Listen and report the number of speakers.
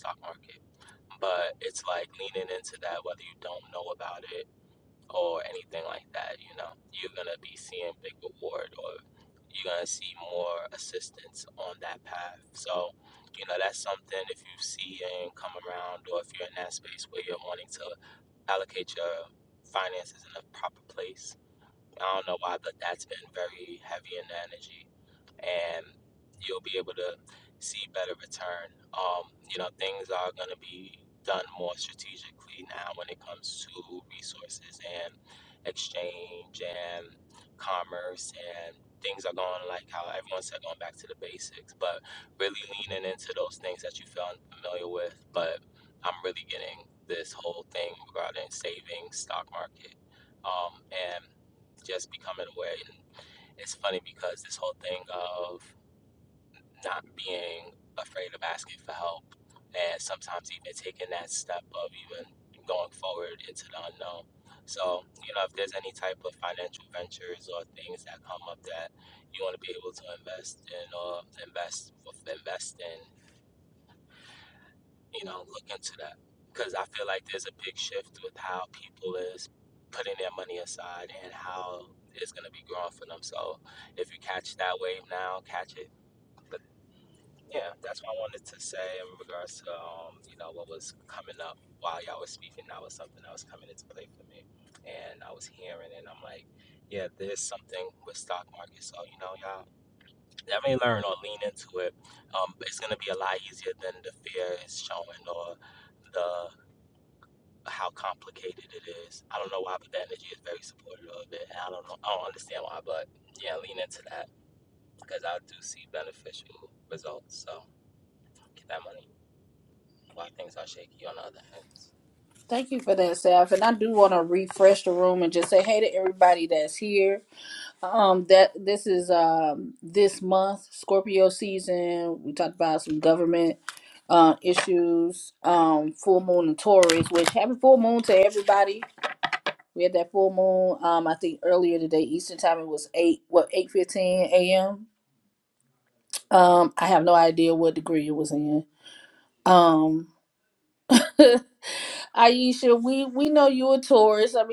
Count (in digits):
2